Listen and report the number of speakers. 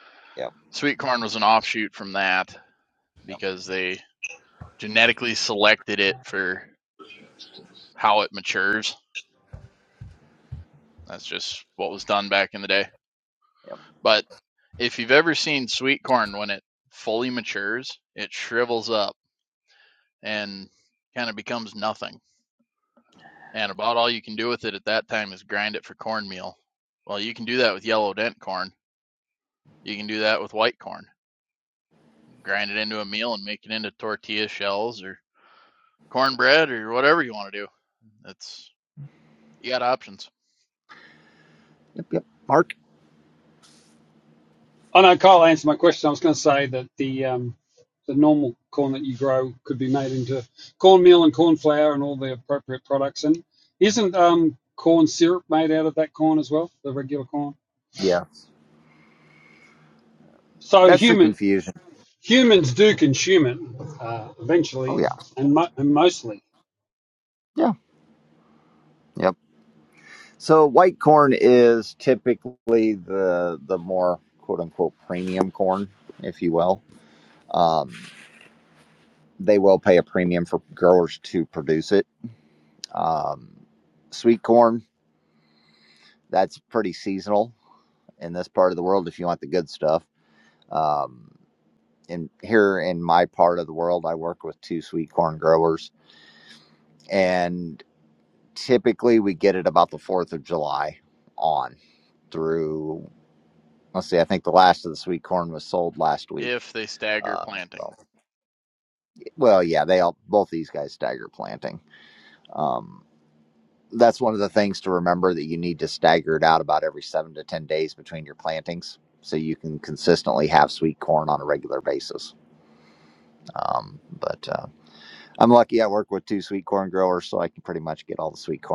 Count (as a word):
three